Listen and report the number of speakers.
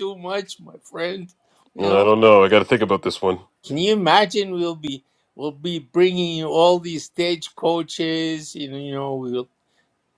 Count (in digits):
2